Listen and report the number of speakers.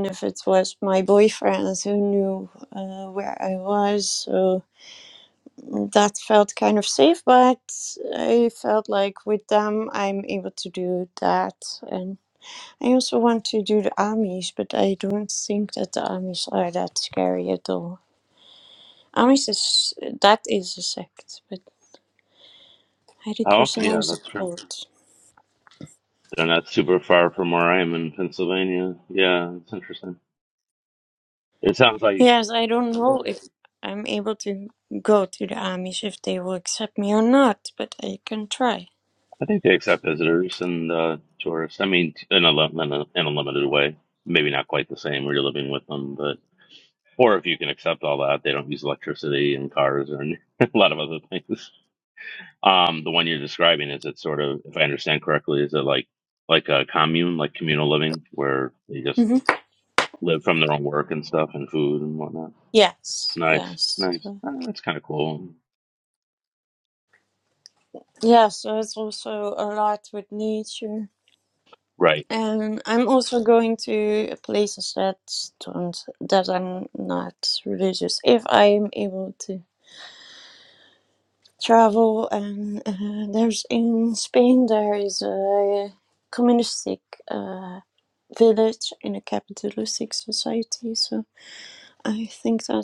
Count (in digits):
2